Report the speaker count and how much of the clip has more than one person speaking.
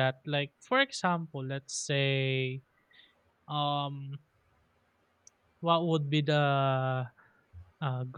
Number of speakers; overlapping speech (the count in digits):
1, no overlap